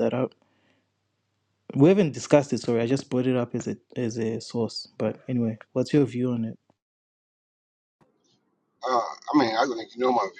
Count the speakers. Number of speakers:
two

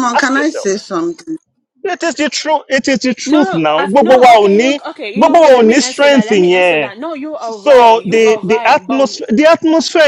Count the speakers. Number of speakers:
three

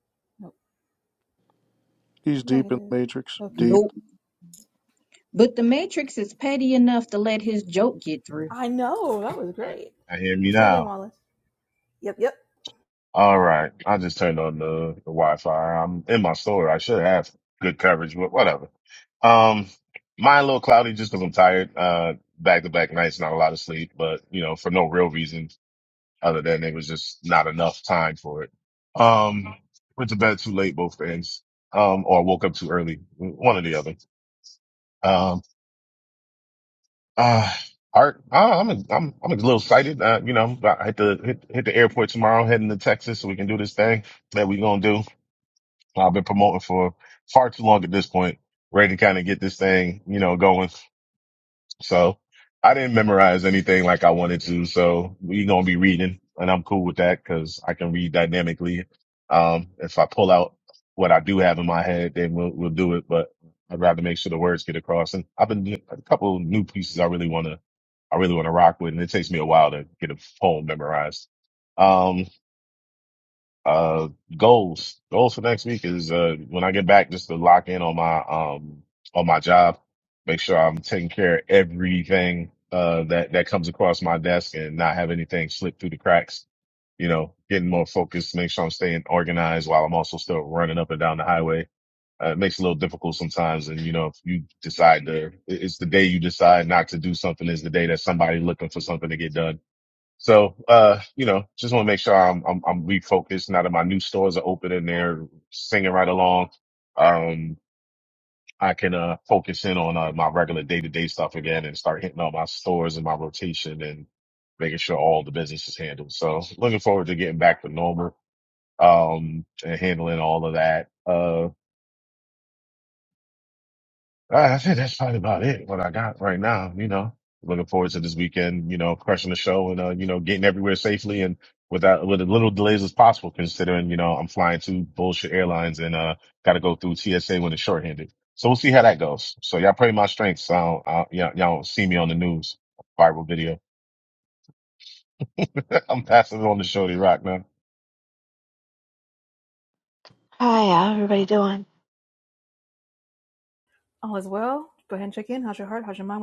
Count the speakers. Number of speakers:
five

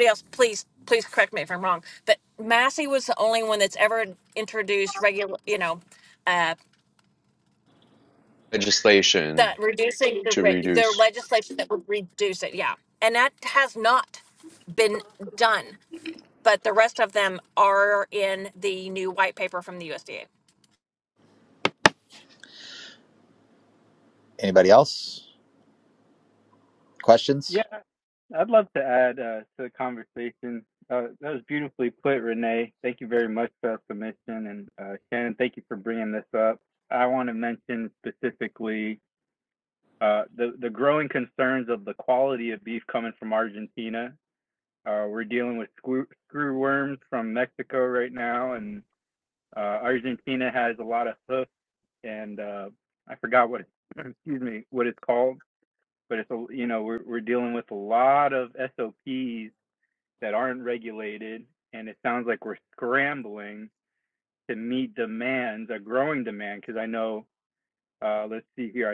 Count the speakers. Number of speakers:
four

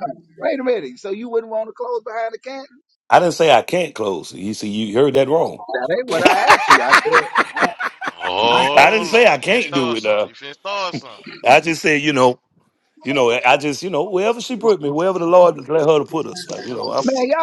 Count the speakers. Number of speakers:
three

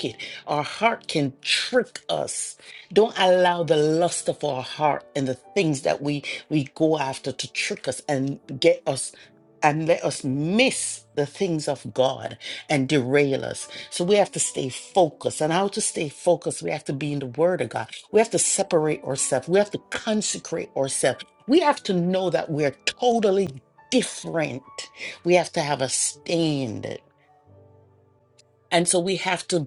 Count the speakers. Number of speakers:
one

